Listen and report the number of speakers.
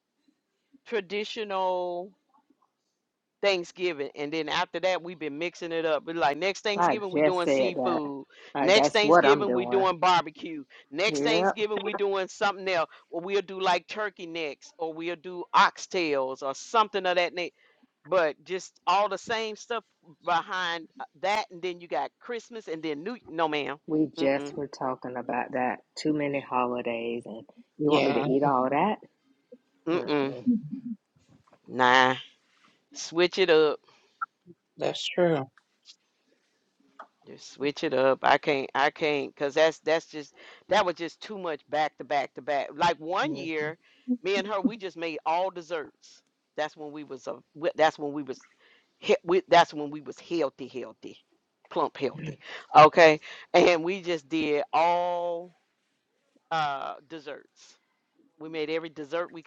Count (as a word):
three